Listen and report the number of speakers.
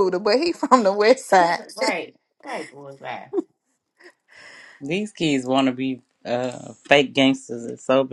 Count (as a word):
three